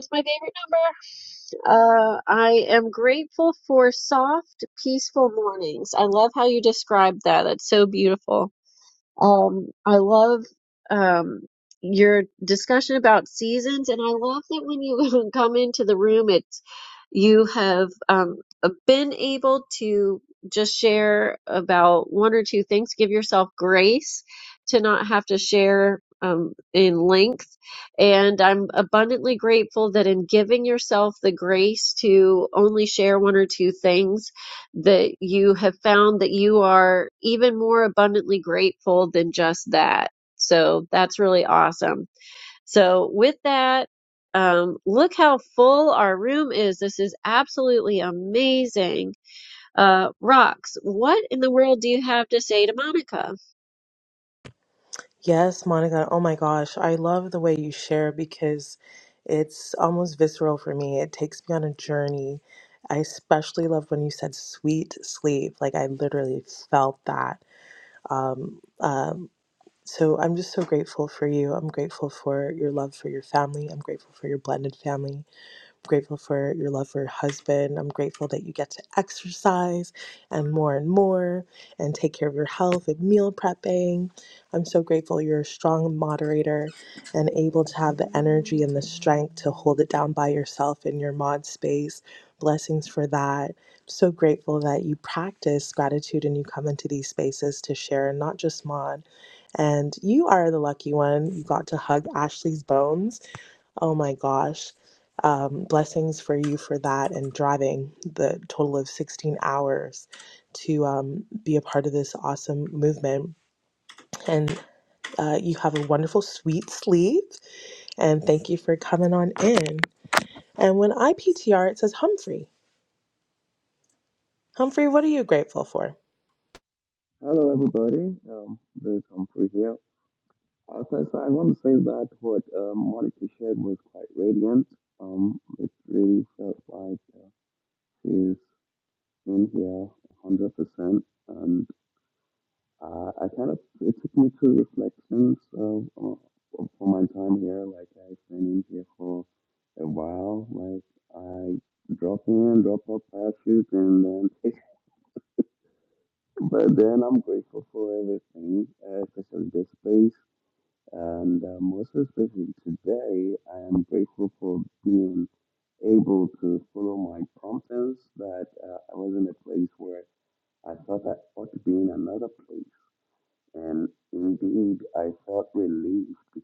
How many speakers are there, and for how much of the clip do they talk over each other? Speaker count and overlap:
3, no overlap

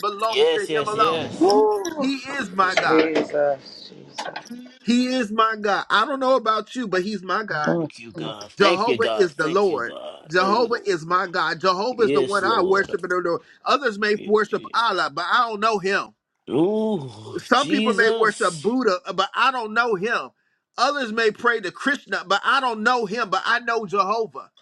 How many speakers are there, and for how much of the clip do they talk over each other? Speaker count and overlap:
3, about 24%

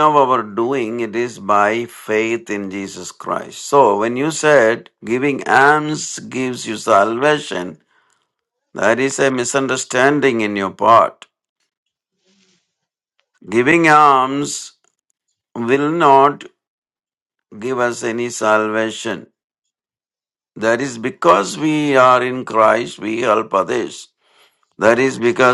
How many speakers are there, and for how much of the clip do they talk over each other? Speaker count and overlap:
1, no overlap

